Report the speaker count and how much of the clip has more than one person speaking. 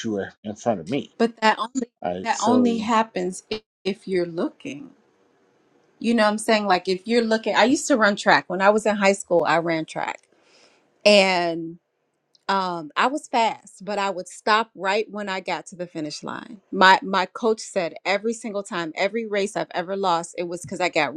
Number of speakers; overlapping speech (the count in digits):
2, about 3%